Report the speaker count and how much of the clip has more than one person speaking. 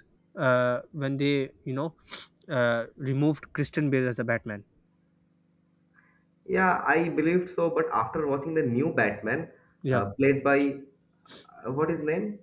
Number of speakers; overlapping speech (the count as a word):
two, about 1%